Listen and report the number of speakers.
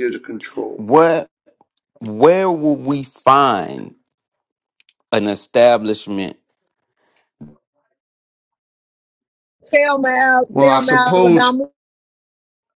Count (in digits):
3